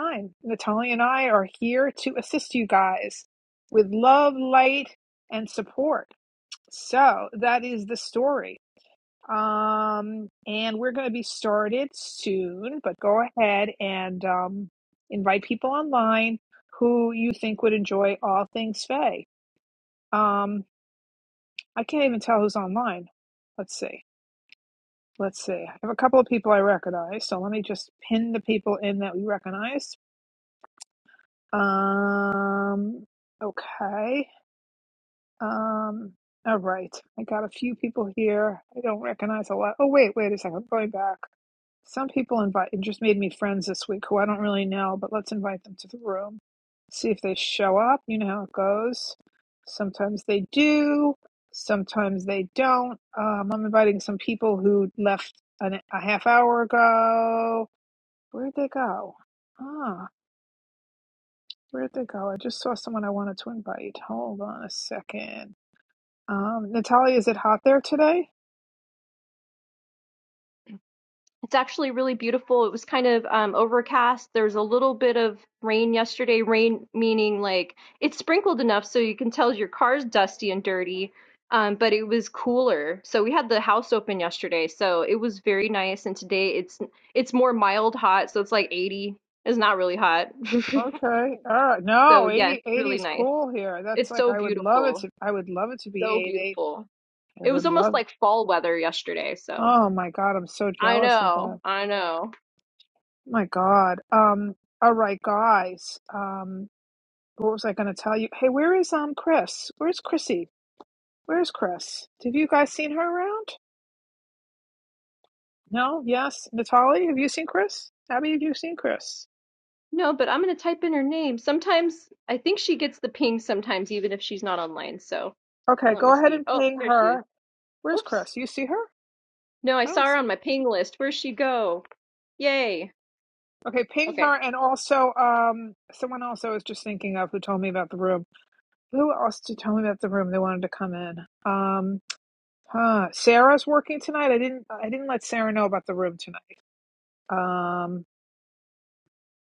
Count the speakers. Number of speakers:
2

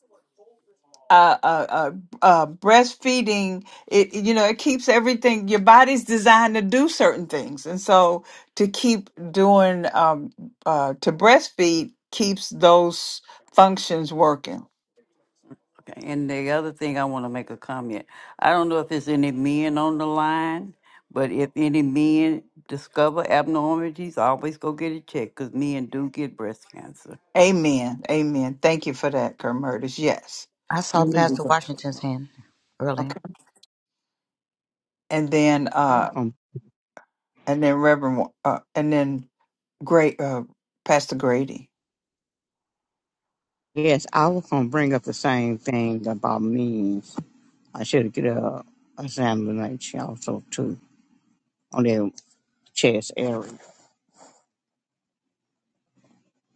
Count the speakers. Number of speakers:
4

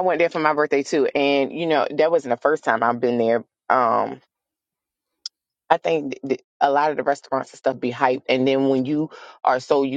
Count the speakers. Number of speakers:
1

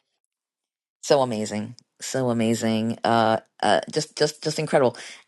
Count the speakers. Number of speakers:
1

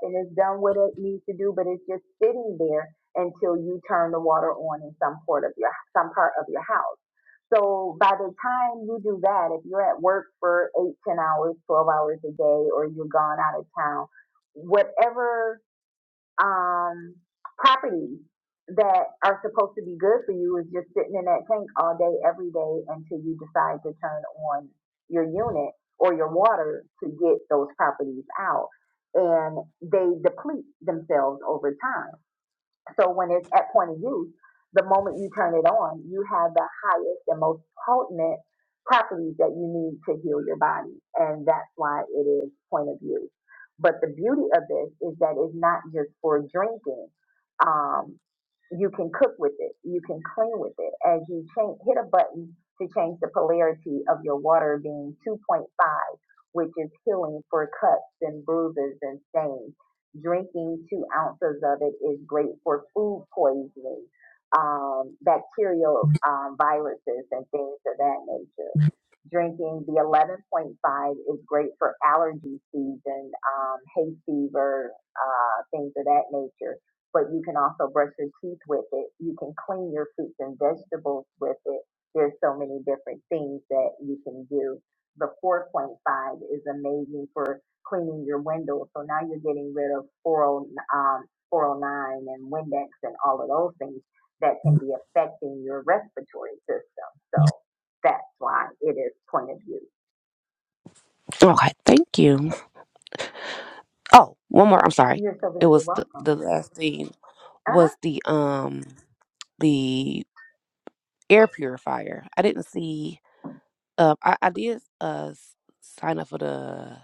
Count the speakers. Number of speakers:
2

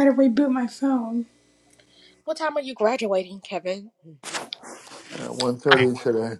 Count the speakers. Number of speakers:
3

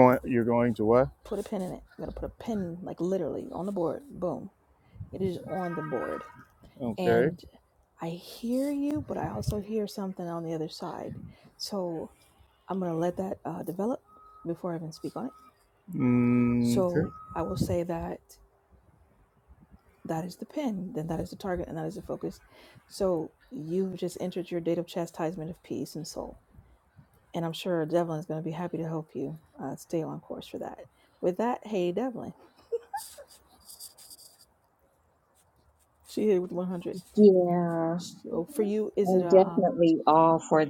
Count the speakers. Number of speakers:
3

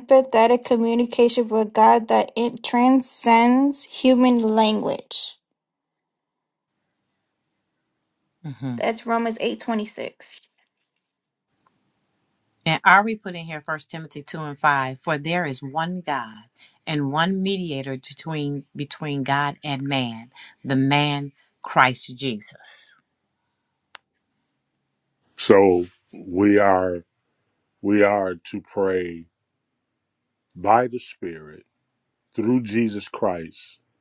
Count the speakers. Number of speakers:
3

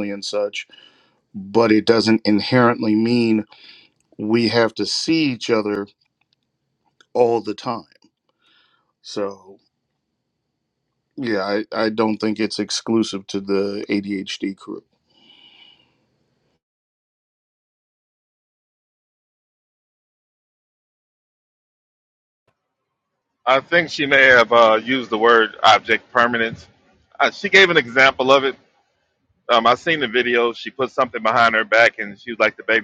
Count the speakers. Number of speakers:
2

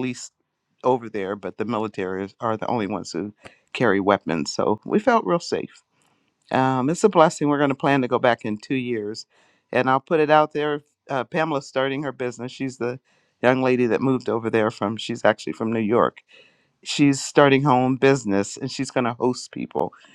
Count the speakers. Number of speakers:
1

